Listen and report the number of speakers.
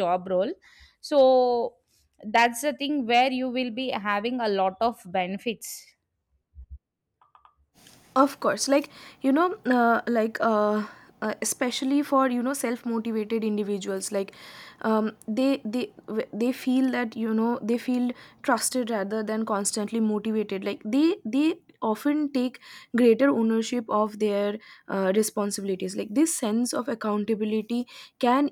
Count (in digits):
2